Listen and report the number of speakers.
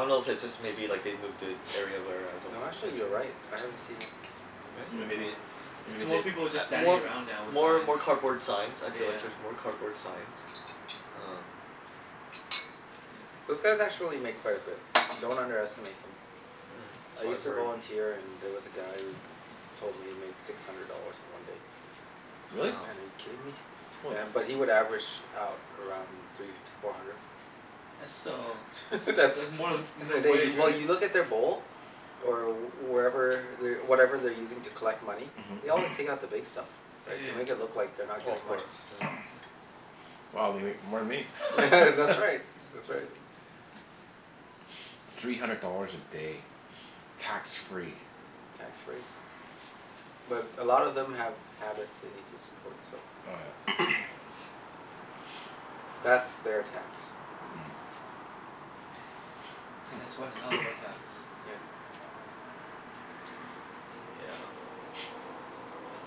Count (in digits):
4